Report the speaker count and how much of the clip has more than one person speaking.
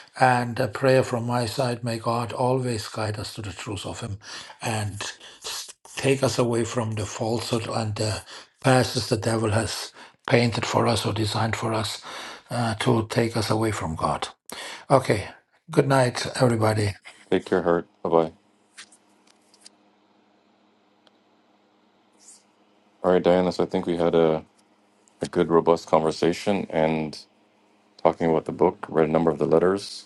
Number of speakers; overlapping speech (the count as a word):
two, no overlap